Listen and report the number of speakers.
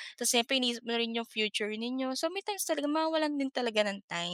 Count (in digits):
1